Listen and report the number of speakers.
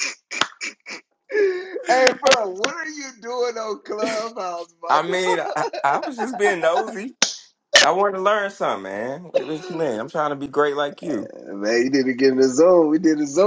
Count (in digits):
2